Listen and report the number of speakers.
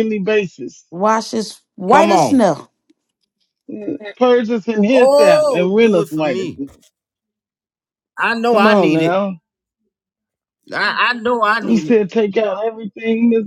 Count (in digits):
3